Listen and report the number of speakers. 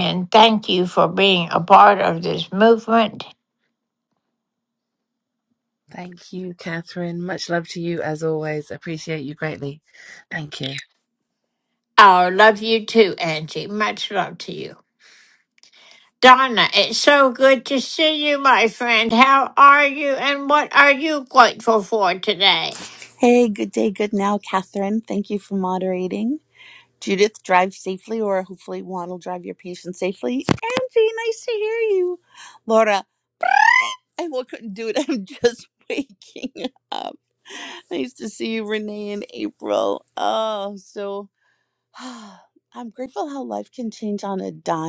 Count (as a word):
three